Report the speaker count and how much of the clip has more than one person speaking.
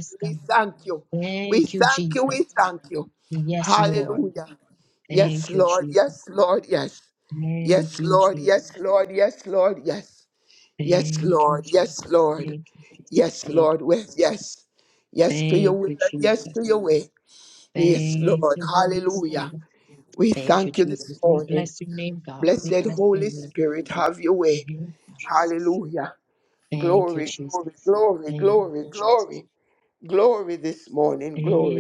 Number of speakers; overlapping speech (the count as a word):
two, about 40%